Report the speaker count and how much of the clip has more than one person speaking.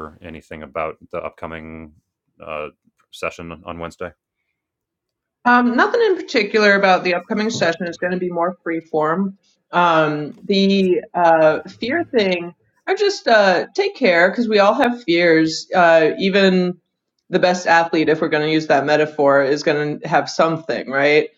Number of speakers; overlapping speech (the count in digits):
2, no overlap